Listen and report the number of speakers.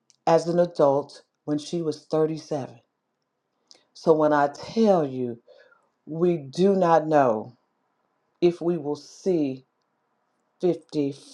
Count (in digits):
1